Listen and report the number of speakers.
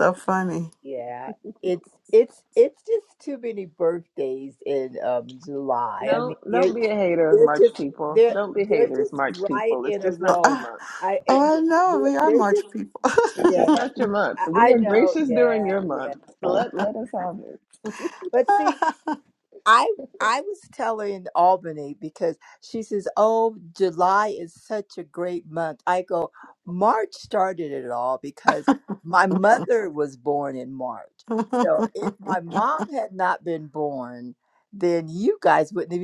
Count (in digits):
3